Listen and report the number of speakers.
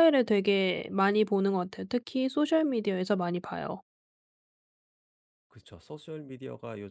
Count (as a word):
two